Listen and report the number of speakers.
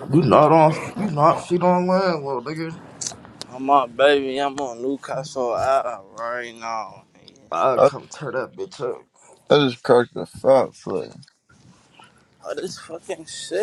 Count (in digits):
3